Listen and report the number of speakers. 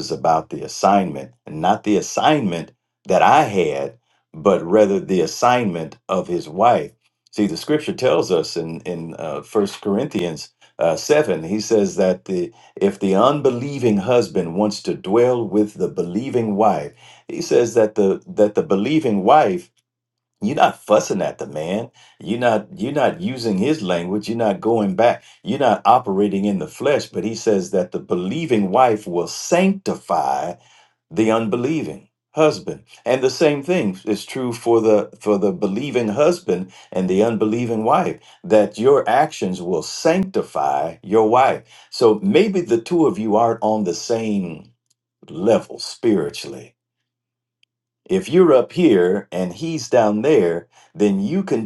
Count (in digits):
1